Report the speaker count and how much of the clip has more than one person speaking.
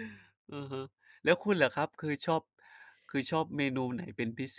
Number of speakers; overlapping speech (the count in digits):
1, no overlap